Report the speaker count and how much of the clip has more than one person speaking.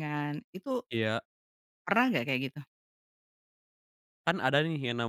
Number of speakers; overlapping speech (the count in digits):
2, no overlap